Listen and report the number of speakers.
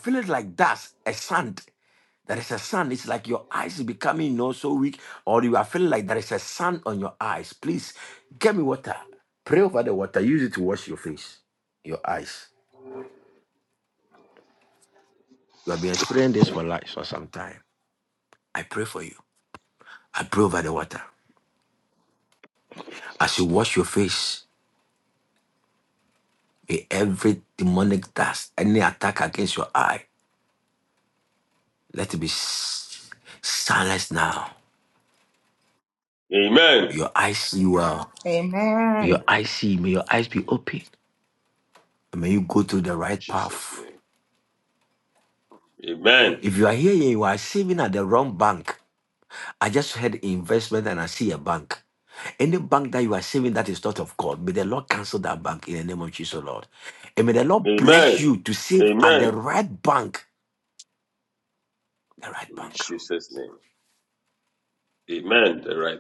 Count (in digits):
3